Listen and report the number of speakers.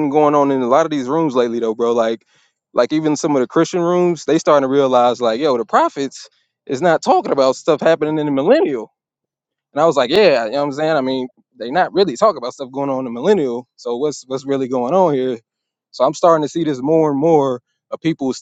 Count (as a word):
one